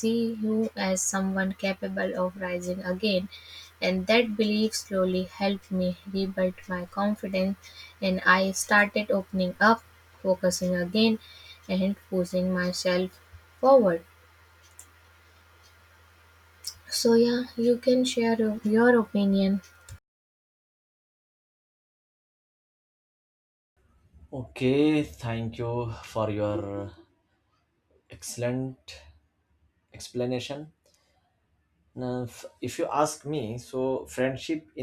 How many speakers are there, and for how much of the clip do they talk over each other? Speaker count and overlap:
two, no overlap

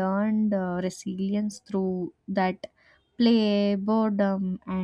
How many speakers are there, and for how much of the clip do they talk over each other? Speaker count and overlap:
one, no overlap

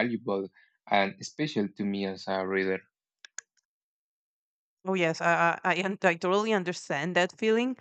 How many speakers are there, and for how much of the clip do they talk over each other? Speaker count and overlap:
two, no overlap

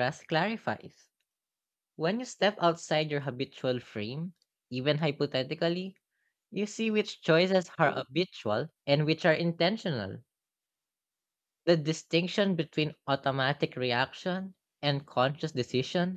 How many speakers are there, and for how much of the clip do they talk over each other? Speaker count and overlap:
one, no overlap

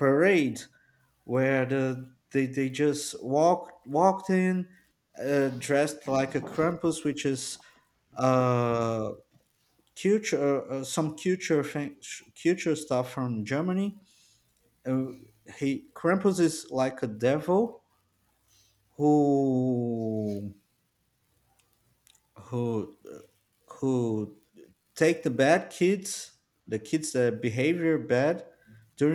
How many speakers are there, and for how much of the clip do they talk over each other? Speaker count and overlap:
one, no overlap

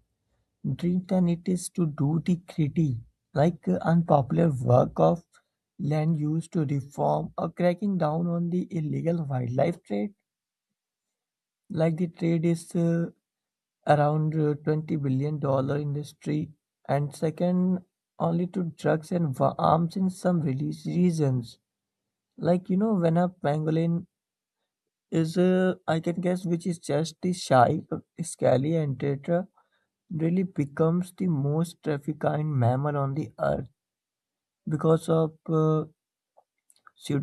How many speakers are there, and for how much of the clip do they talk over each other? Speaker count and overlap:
one, no overlap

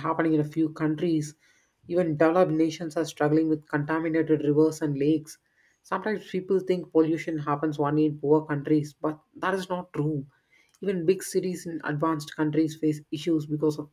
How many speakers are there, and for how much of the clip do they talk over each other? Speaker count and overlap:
one, no overlap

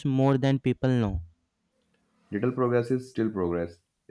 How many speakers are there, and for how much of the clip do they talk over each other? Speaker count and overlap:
two, no overlap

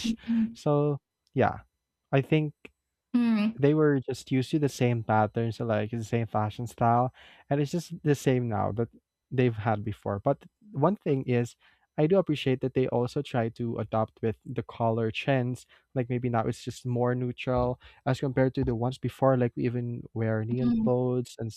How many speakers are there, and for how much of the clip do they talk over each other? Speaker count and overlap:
two, about 2%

